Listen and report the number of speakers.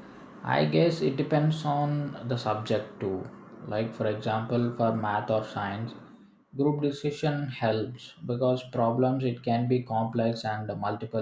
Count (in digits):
1